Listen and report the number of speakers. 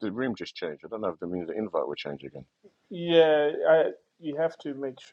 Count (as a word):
two